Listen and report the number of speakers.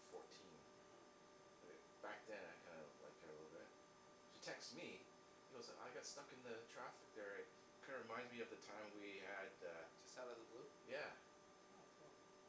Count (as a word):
two